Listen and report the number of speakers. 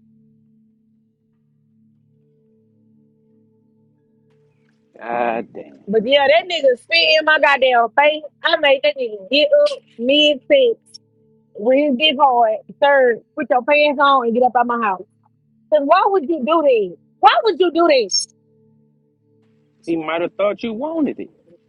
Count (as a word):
two